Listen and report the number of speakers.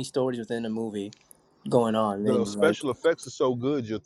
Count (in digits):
2